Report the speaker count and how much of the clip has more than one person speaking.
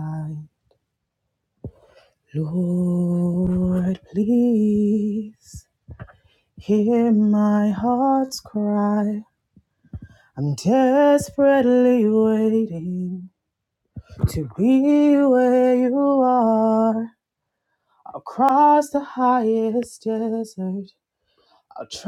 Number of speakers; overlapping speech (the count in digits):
1, no overlap